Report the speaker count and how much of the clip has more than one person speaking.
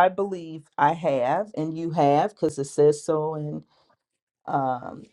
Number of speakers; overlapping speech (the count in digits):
1, no overlap